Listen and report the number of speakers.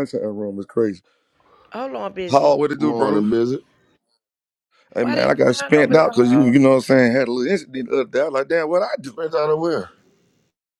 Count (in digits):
3